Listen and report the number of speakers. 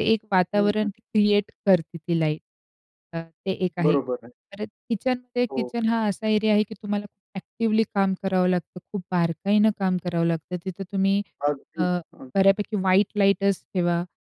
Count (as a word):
two